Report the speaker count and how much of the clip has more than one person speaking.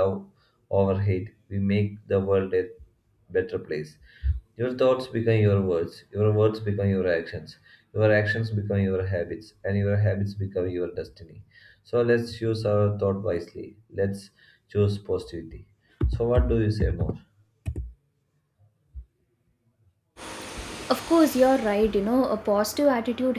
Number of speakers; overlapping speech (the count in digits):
2, no overlap